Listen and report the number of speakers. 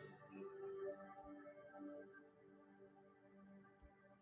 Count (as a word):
zero